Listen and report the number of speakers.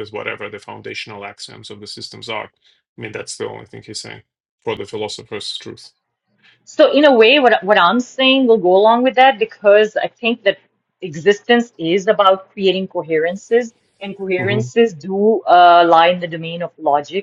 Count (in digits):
2